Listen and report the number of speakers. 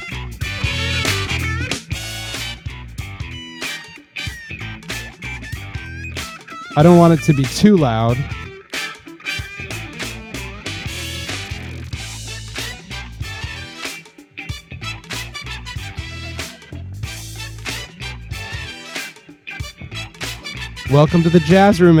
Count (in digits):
1